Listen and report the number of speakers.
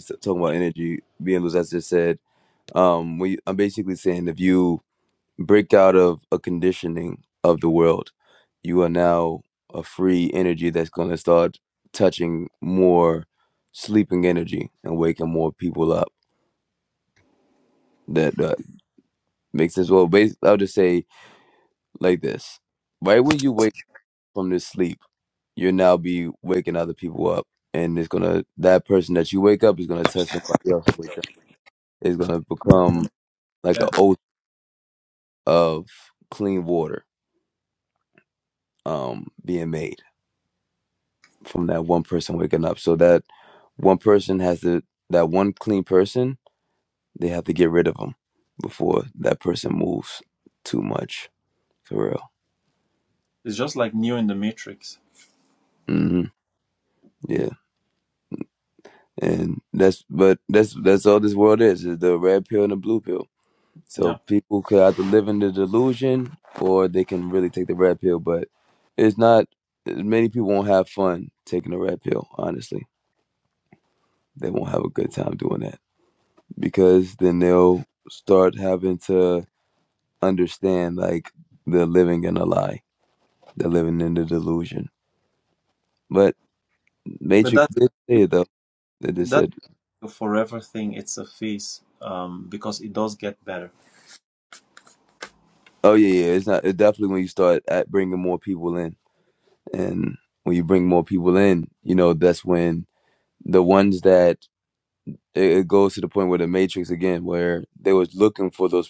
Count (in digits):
2